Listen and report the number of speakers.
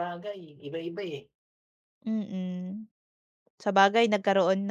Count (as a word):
two